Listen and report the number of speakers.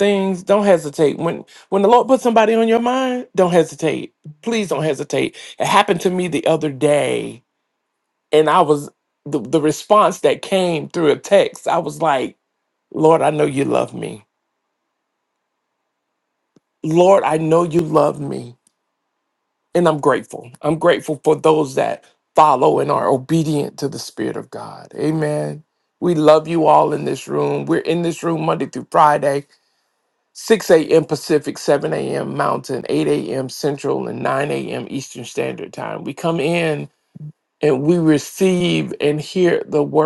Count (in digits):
1